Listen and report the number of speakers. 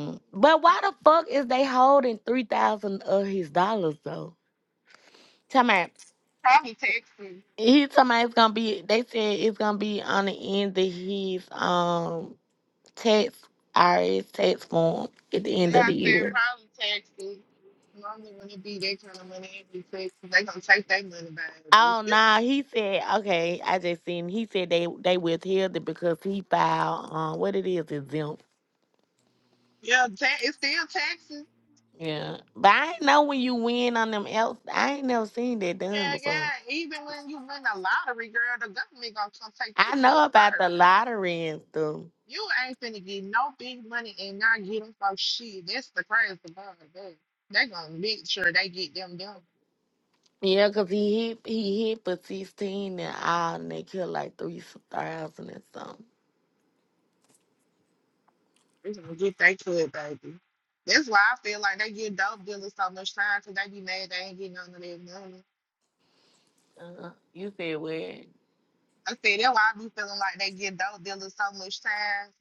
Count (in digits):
2